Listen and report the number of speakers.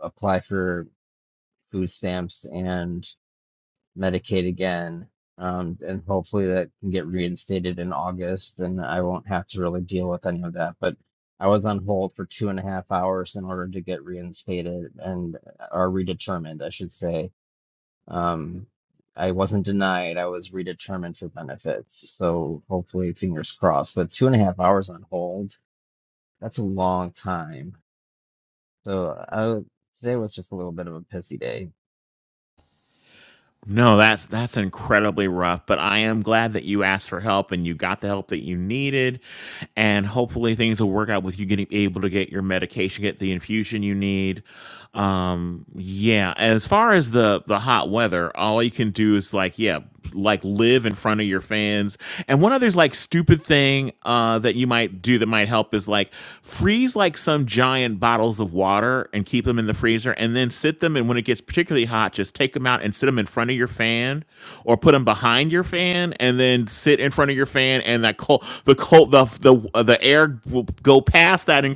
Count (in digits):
2